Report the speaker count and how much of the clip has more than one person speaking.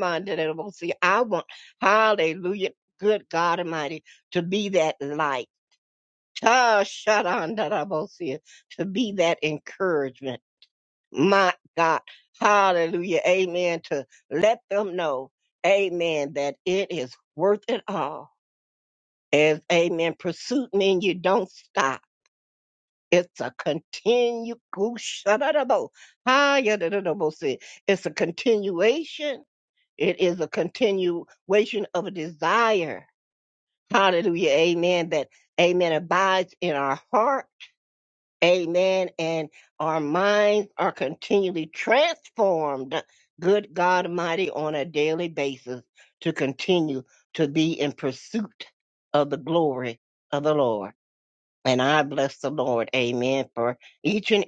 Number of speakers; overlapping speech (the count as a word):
one, no overlap